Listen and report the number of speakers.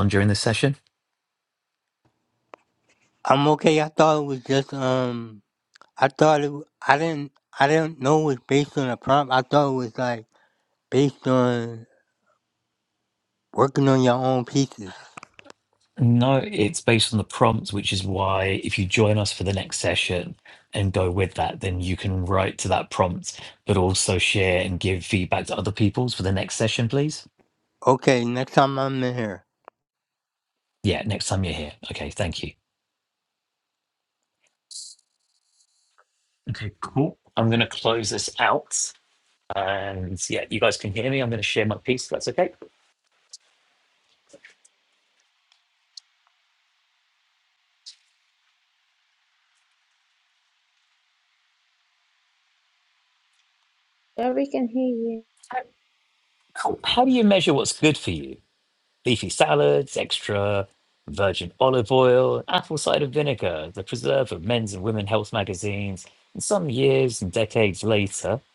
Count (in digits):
3